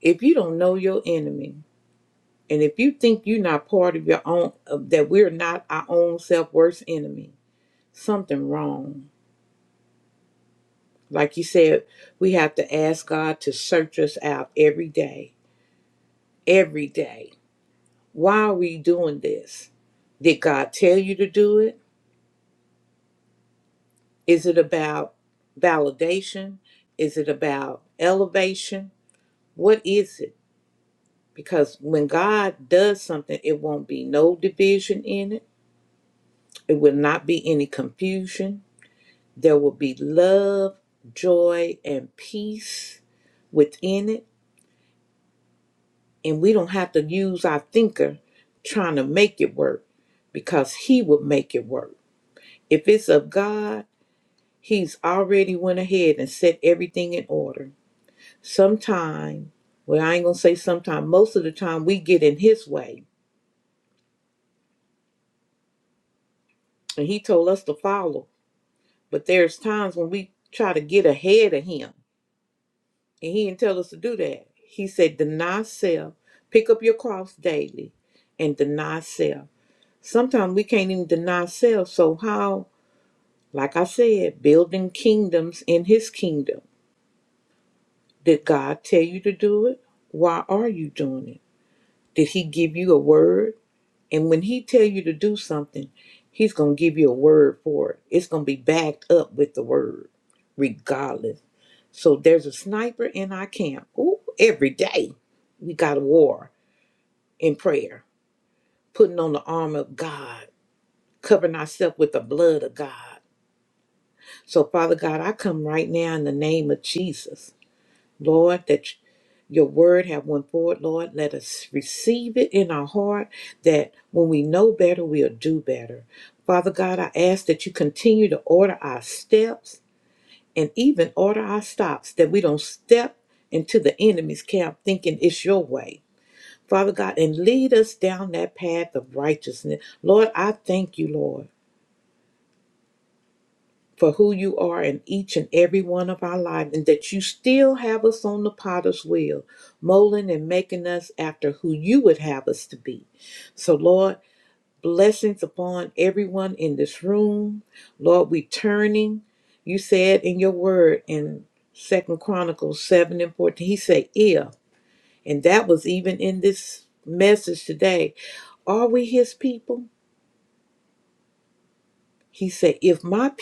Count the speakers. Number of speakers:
1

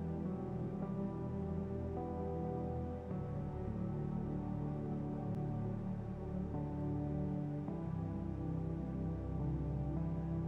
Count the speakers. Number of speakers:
0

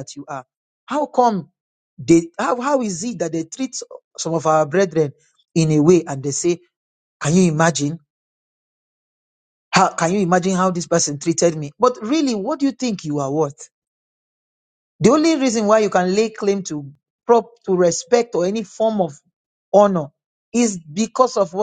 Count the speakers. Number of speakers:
1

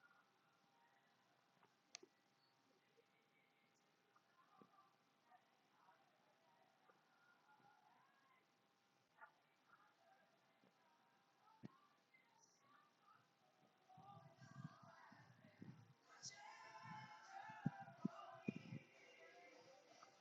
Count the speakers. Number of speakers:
0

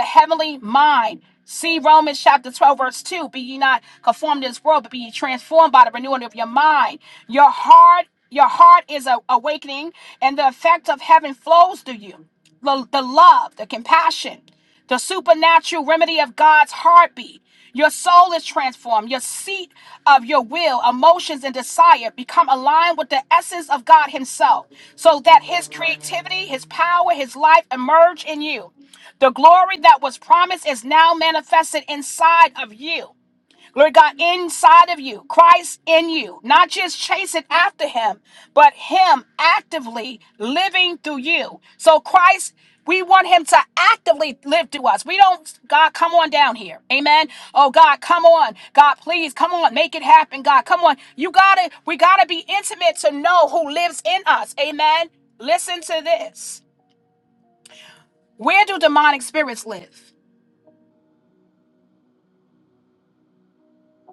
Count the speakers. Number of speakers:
1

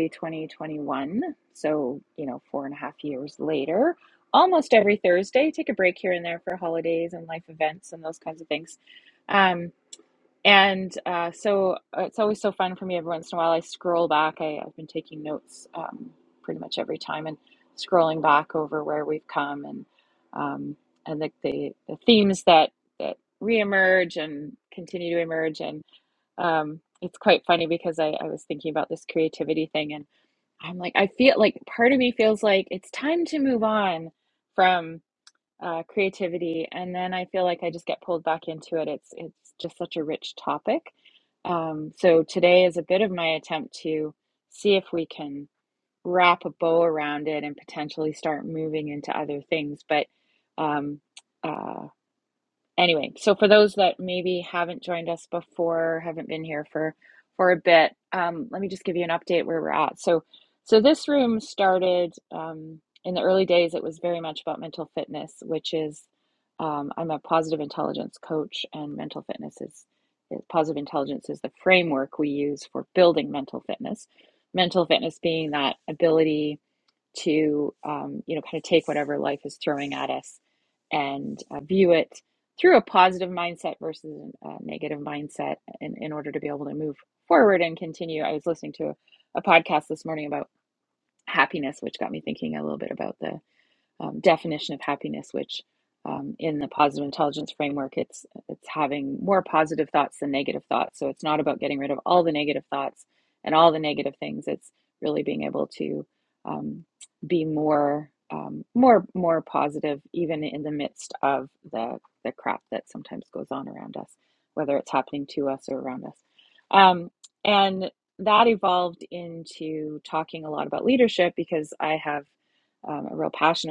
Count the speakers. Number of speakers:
1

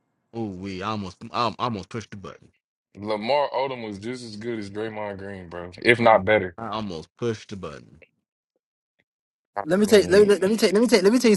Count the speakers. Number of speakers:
3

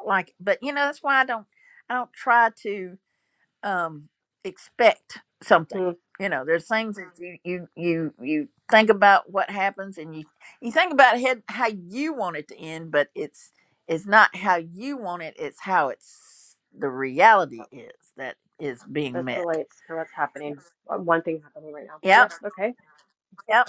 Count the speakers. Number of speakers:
2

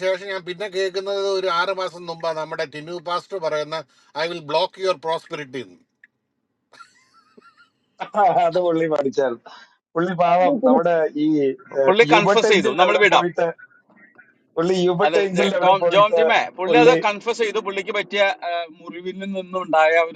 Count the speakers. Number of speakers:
3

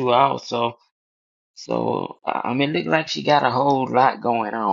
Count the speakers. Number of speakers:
1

